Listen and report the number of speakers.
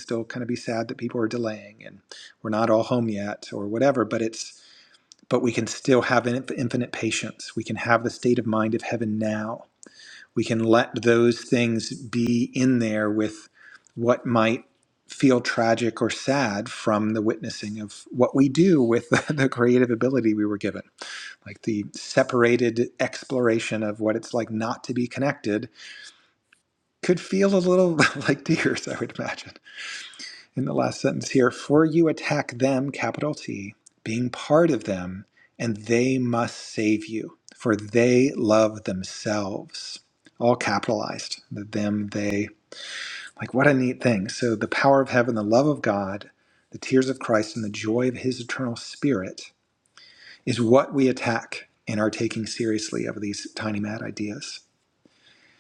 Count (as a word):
one